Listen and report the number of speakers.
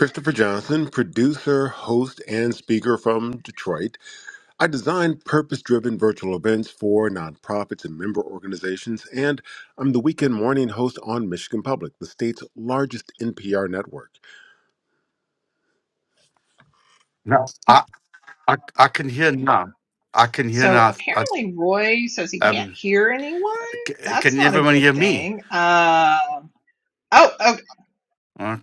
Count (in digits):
3